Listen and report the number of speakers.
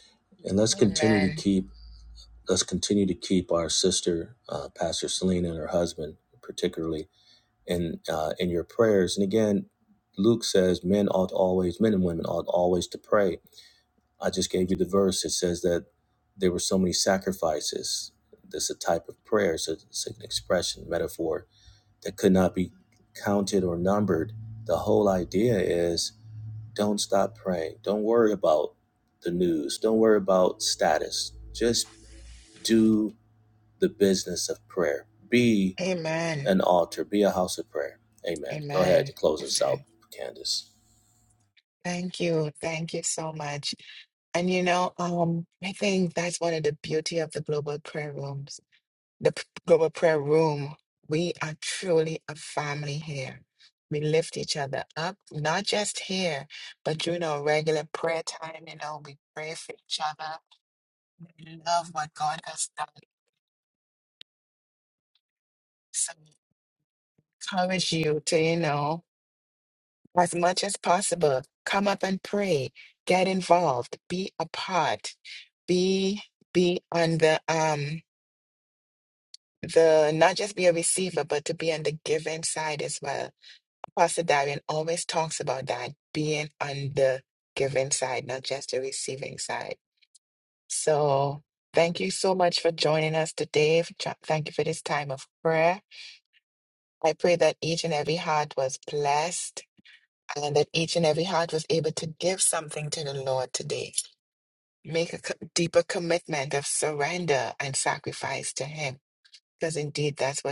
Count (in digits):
2